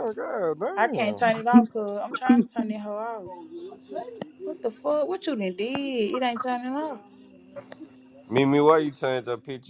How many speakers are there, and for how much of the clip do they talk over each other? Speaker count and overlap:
3, about 5%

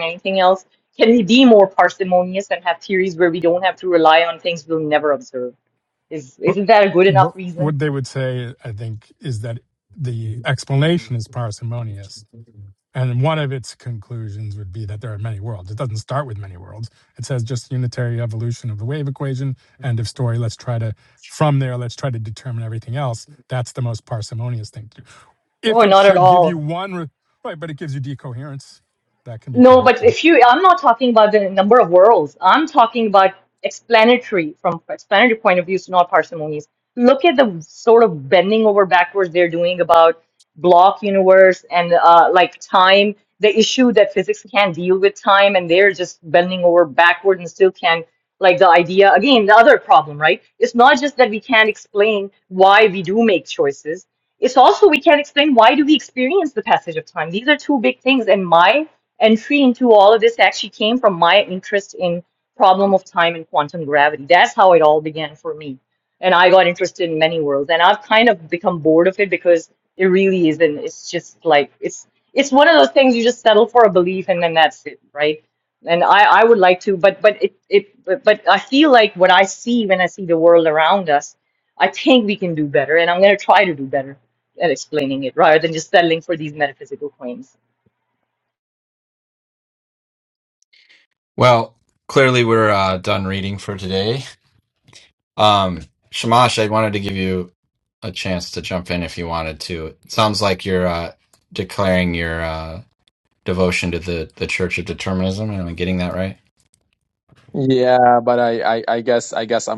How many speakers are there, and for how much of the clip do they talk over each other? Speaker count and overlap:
4, about 2%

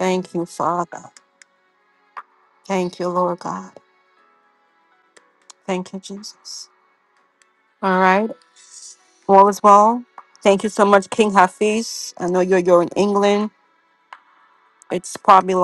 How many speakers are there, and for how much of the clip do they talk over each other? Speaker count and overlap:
1, no overlap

